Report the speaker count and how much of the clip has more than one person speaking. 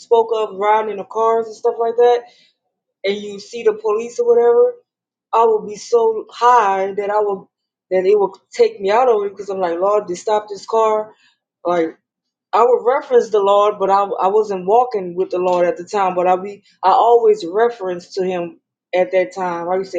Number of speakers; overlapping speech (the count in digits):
1, no overlap